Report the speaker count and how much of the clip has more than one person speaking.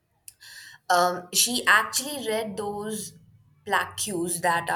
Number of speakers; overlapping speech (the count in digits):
1, no overlap